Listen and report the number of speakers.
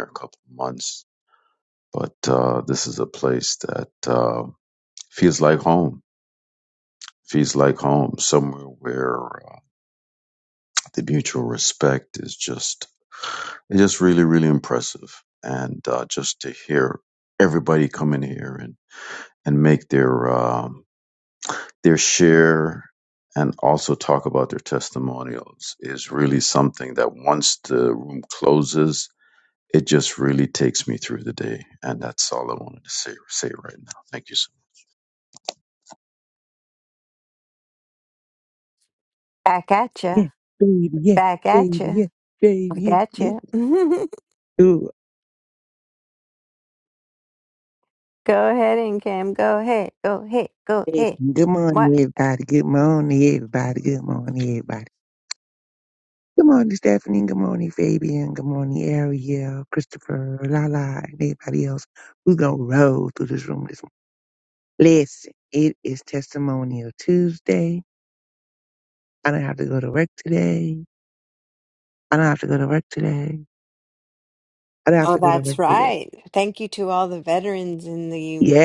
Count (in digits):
3